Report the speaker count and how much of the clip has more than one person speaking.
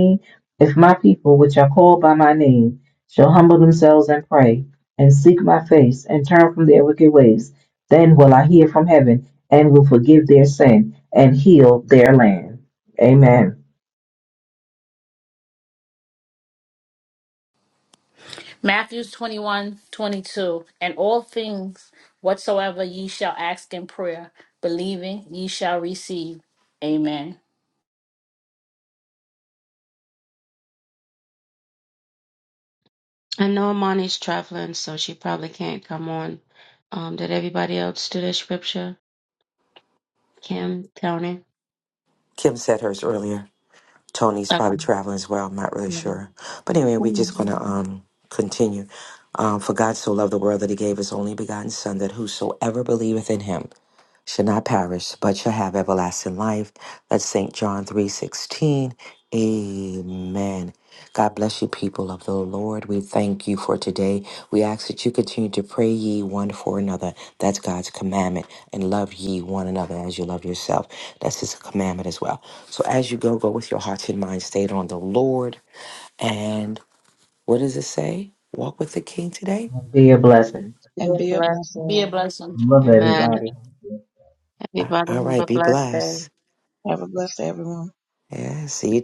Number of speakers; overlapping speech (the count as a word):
five, about 4%